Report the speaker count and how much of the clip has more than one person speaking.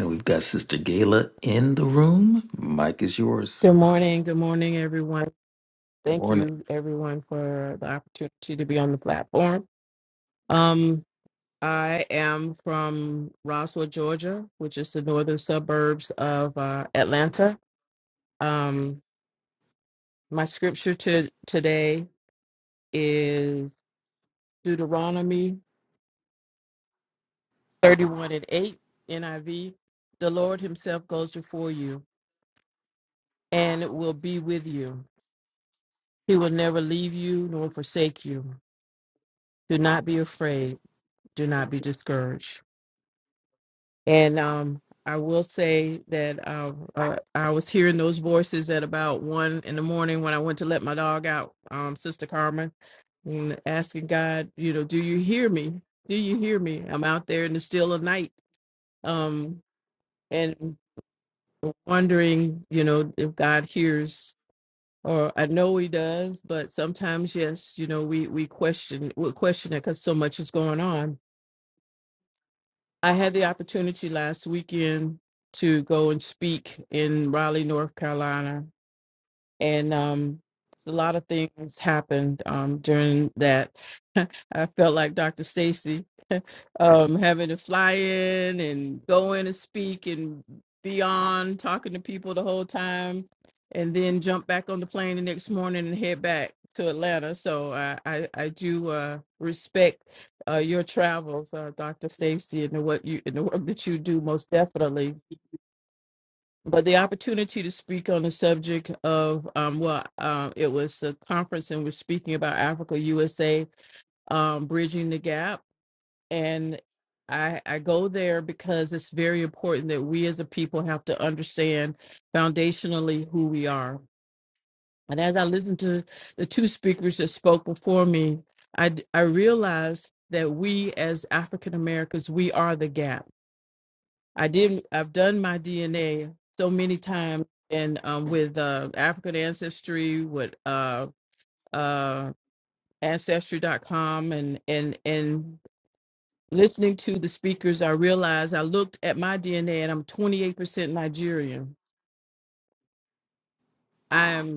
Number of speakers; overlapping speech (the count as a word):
two, under 1%